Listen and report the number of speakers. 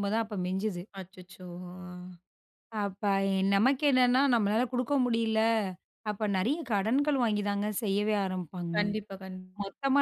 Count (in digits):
2